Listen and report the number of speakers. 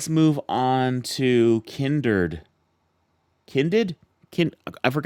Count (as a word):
one